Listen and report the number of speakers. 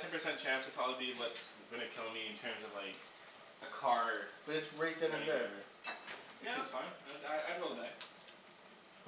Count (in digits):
2